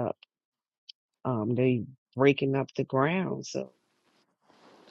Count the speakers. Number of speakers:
1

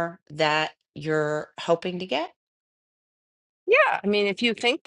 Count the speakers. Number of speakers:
2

